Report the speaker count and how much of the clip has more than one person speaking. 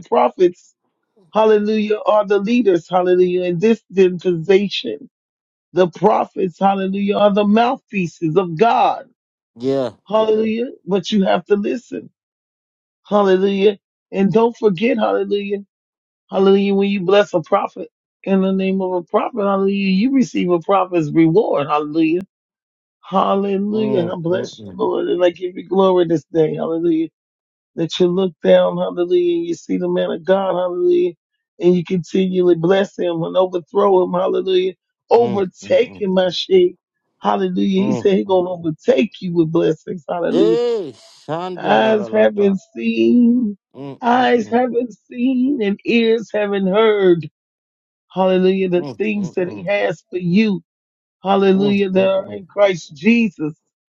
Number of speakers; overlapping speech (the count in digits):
2, about 11%